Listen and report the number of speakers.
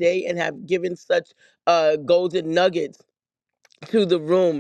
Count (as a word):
one